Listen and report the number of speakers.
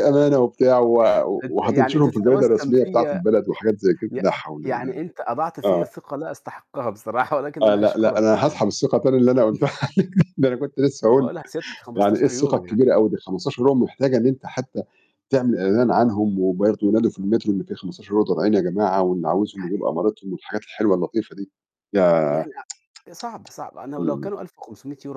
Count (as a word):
two